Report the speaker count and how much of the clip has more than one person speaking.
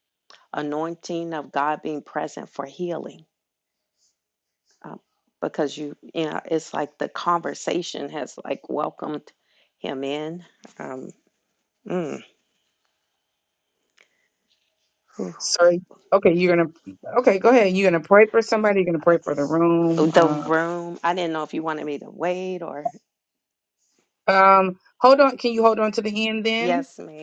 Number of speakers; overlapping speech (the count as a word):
two, about 2%